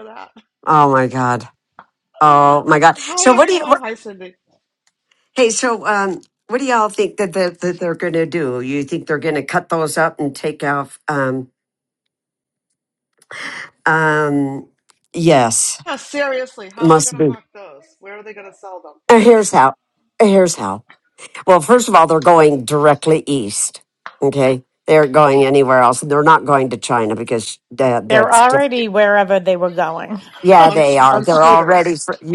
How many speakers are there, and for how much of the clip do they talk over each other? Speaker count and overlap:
3, about 9%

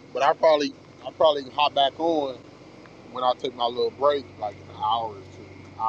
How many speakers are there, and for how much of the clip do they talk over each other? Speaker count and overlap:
1, no overlap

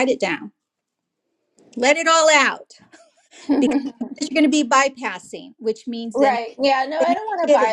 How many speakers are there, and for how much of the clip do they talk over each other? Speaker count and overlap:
2, about 12%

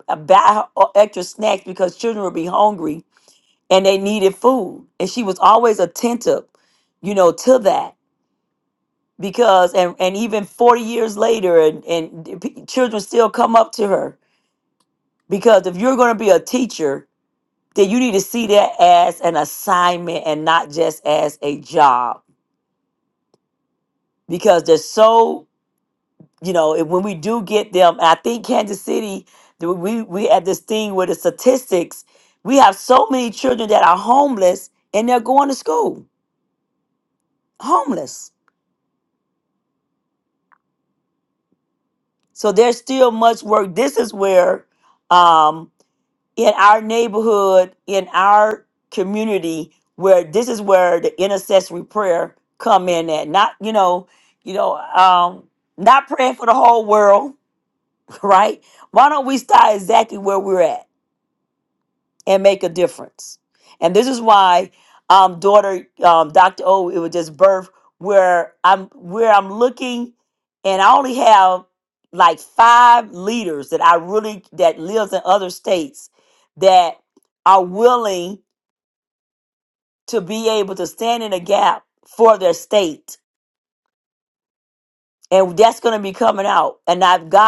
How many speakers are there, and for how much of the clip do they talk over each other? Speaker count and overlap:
1, no overlap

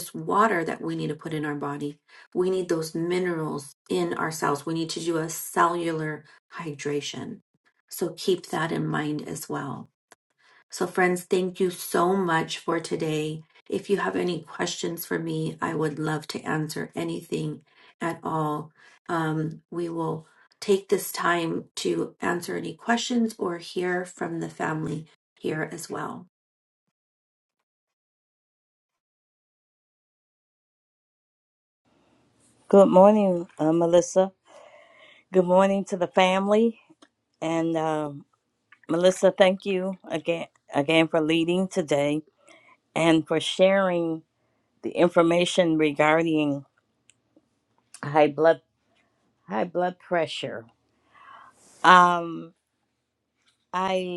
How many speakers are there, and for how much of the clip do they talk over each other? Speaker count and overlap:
2, no overlap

